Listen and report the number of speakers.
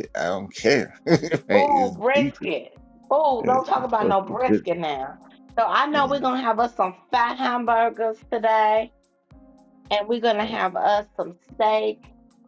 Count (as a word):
two